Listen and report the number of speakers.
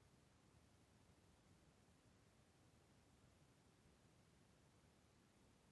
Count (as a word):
zero